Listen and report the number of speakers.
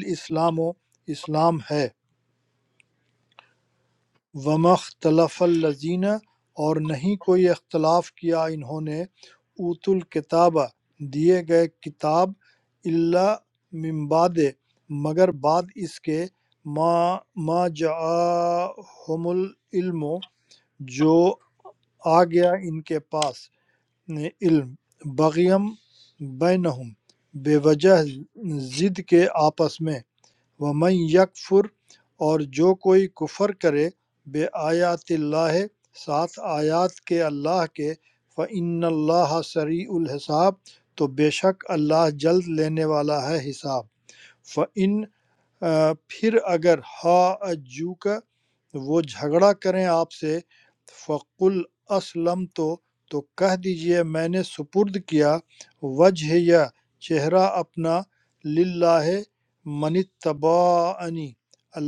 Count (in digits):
1